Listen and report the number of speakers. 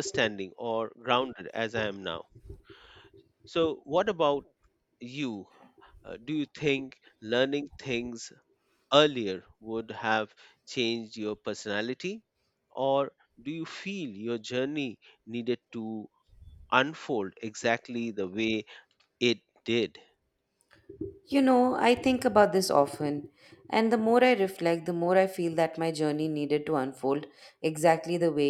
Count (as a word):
two